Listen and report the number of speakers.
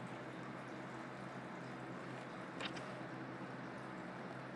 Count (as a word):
zero